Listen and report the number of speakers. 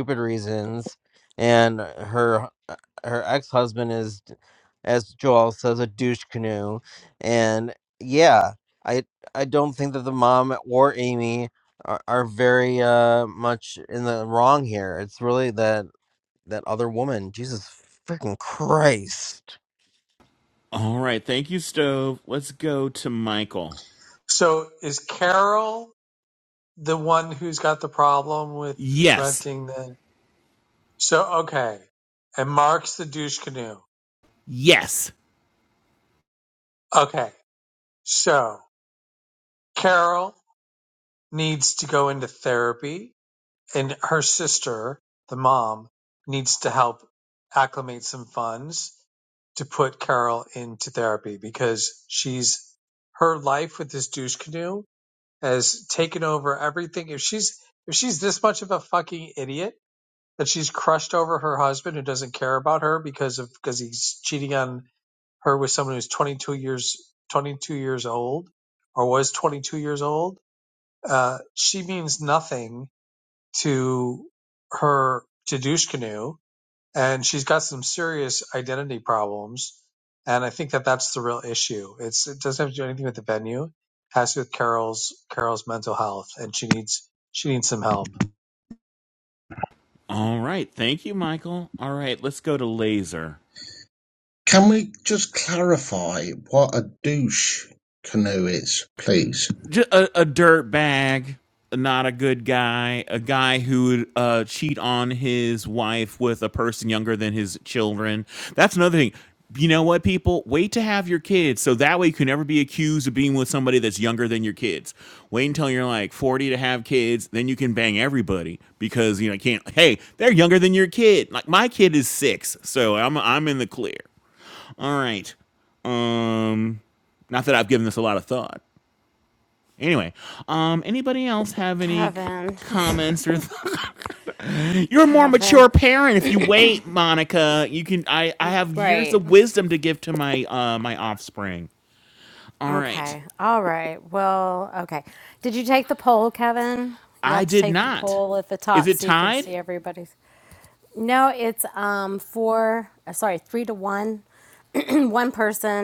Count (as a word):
five